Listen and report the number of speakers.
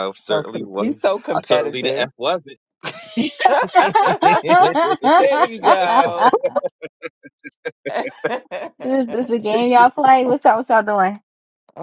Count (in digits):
3